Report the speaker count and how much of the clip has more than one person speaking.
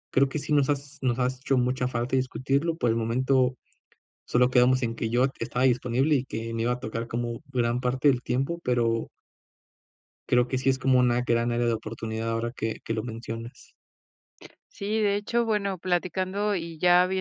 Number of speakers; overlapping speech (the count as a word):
two, no overlap